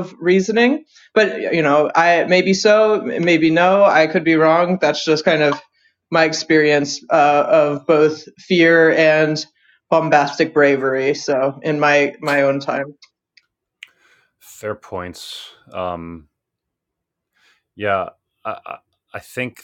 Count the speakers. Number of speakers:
2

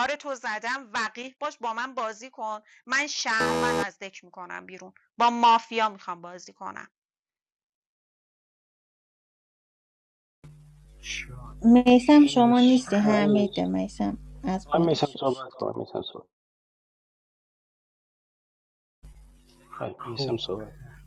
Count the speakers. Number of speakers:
4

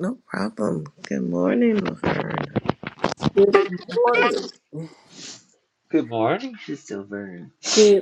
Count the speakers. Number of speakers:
3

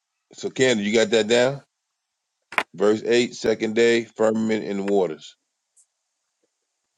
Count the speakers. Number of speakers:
1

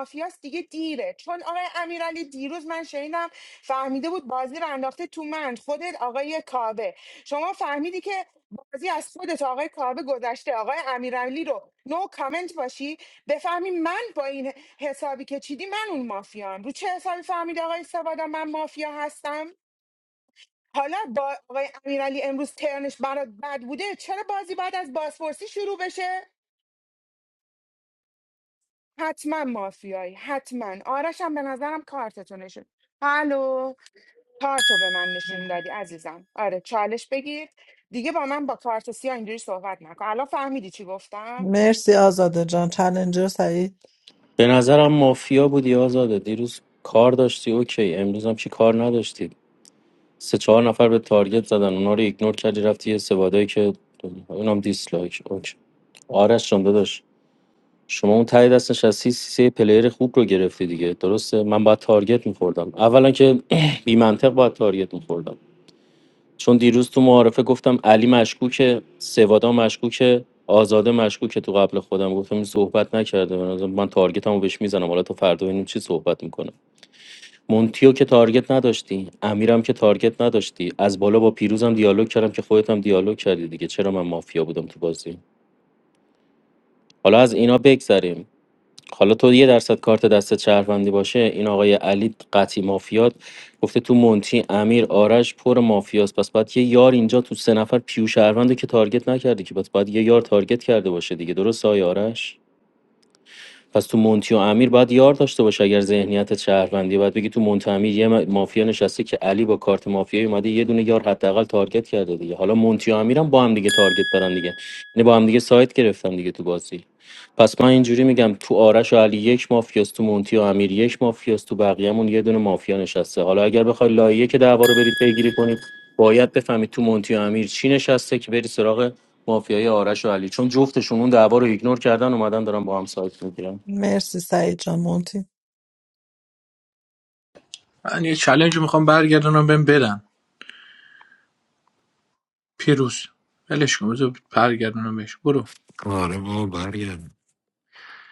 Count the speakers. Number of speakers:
5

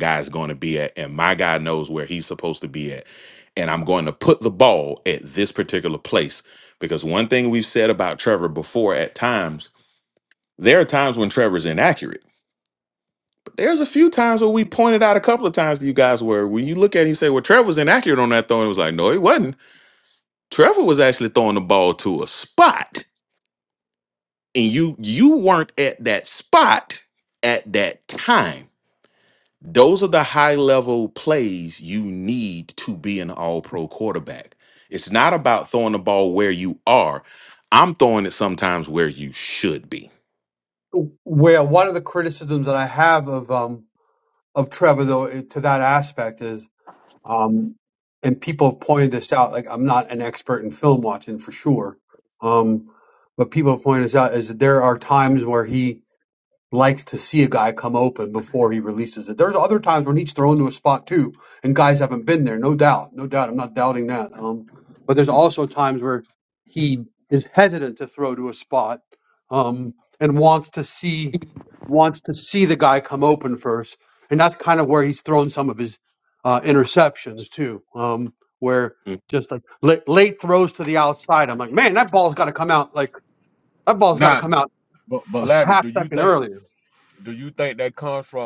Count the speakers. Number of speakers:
3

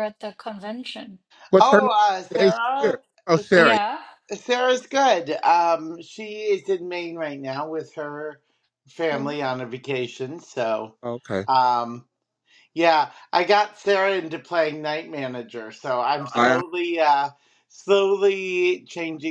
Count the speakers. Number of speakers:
3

